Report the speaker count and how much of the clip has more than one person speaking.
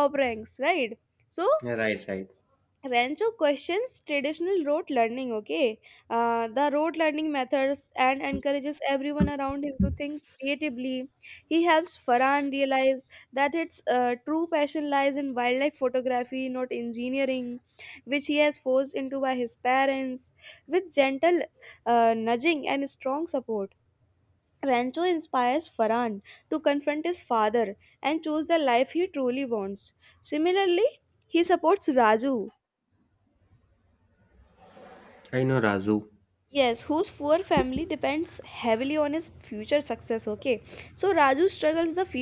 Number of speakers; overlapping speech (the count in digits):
2, no overlap